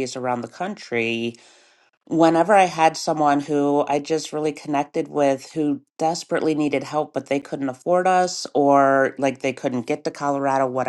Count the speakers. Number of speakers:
1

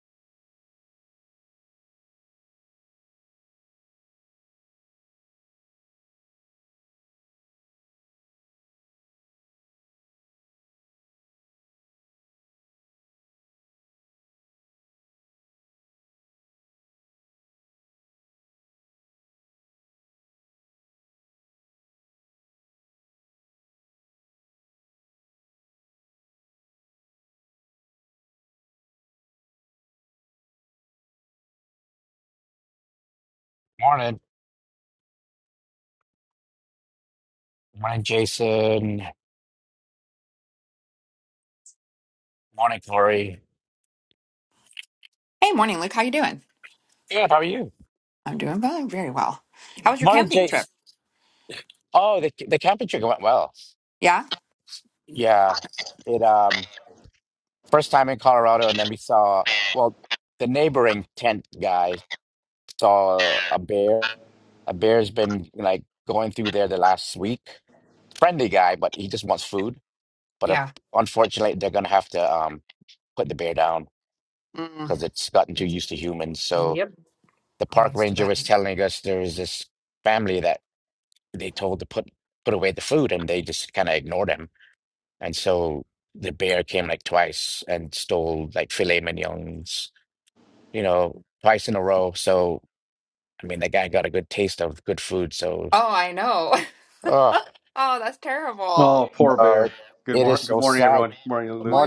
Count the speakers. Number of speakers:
3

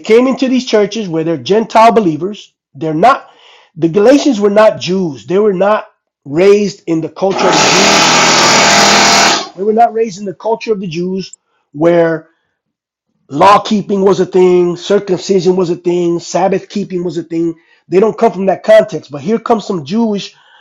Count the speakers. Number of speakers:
1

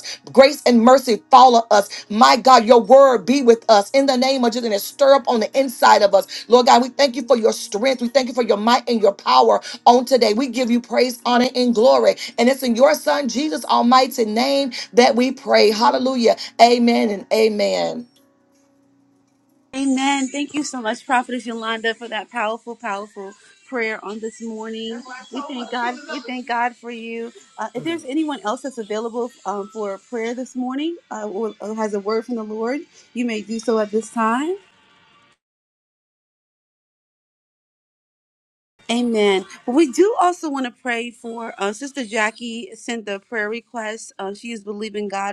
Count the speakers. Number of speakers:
2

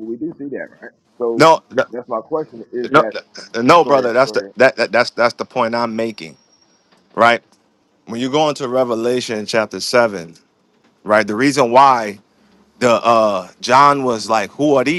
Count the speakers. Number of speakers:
2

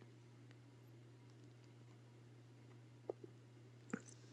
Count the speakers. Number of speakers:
0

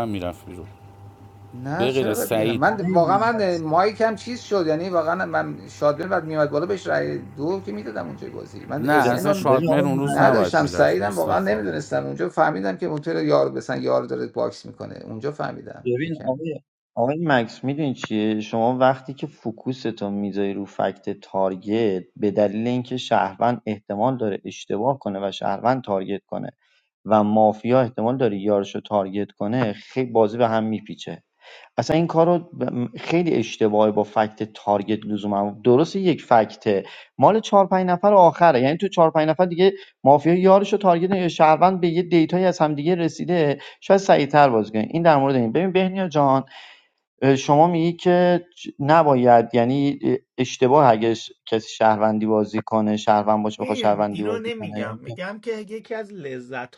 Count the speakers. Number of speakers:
4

